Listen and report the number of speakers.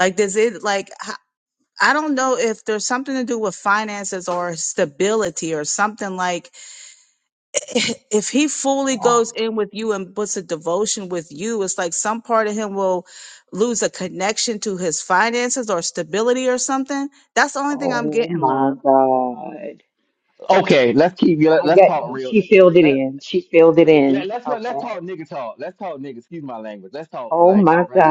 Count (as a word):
three